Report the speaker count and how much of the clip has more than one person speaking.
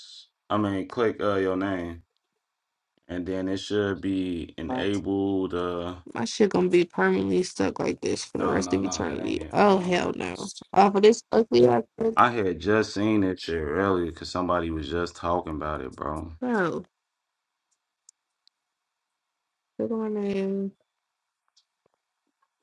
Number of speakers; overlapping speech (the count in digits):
2, about 8%